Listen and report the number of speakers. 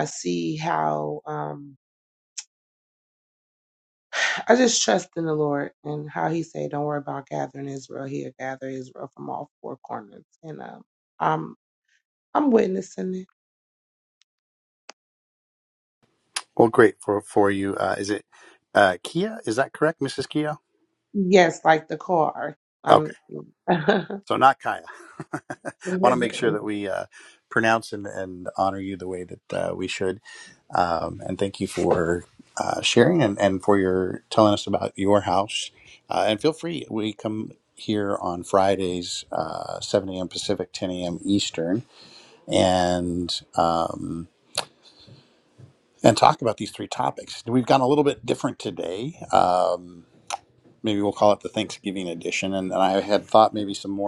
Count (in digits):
2